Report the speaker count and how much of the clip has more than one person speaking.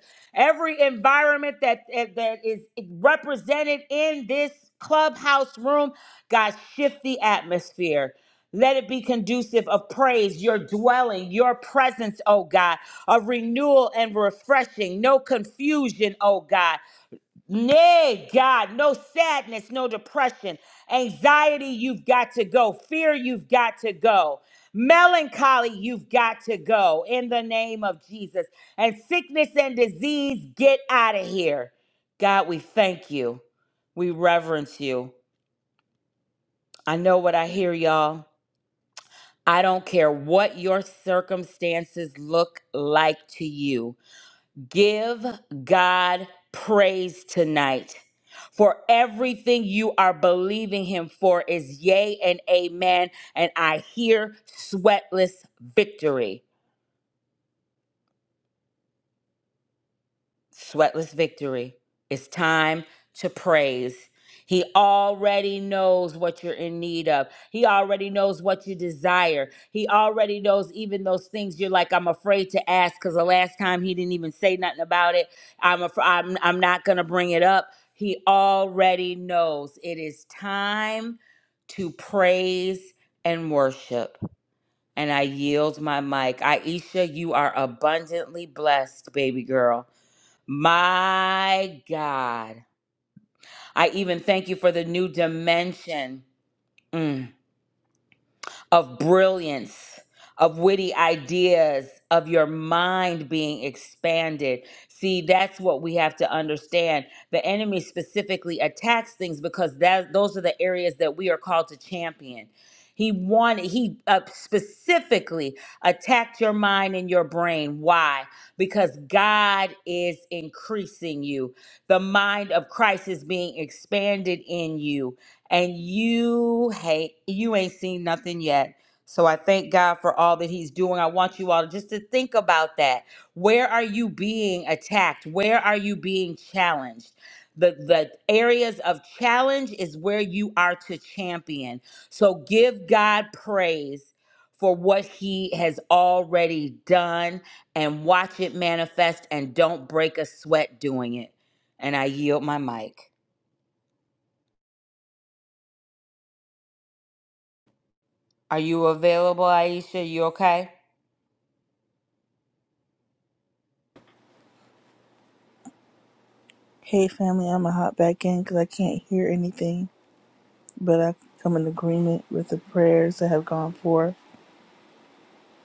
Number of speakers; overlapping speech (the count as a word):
two, no overlap